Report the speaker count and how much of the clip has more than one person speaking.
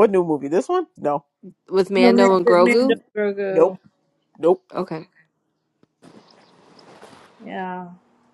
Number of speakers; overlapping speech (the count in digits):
3, about 14%